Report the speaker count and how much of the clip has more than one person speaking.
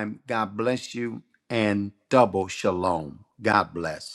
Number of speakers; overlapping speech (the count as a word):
one, no overlap